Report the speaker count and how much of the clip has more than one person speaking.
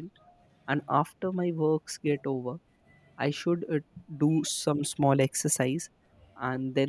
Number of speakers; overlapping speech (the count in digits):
1, no overlap